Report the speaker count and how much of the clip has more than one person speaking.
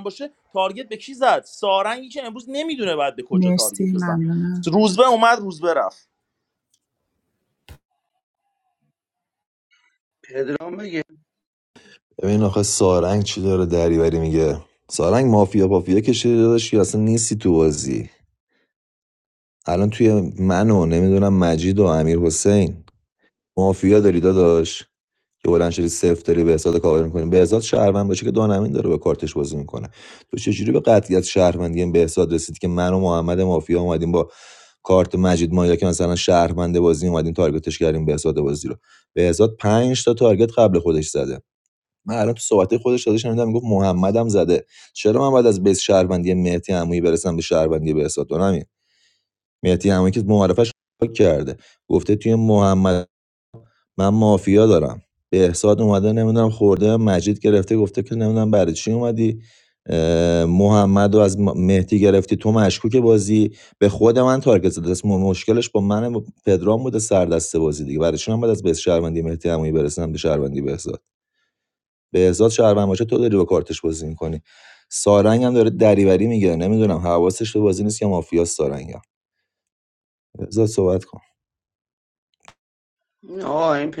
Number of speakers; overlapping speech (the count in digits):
4, about 1%